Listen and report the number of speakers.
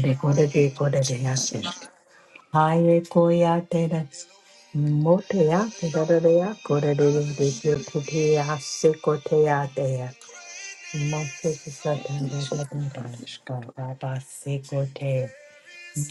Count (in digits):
2